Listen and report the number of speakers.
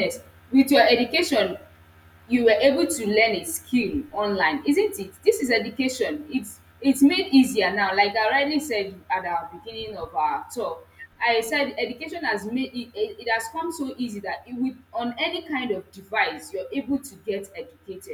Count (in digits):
1